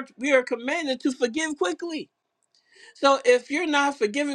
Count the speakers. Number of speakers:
1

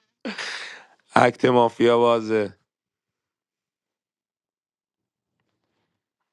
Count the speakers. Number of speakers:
1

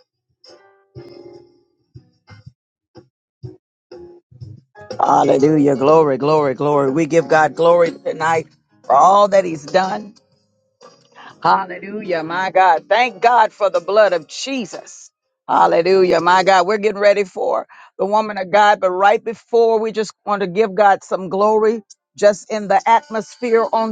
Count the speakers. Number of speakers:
1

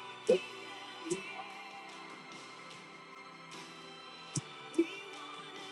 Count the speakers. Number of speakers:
0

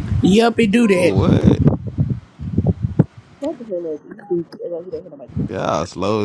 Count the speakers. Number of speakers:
3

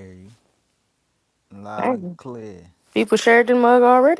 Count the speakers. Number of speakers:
2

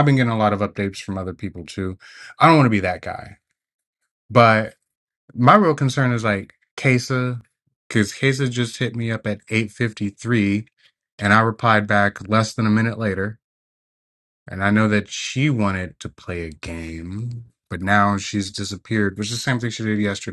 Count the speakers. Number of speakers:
1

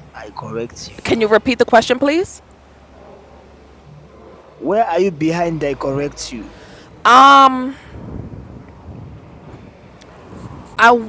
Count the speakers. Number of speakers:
2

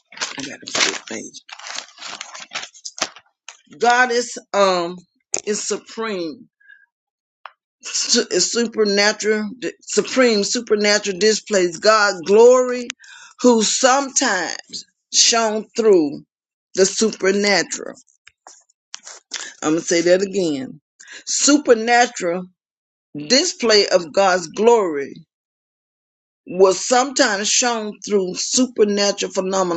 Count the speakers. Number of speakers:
1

